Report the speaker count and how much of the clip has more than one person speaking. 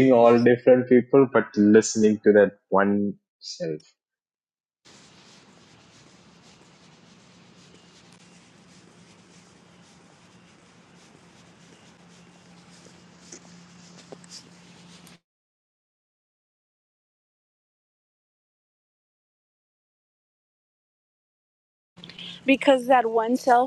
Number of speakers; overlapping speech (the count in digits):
2, no overlap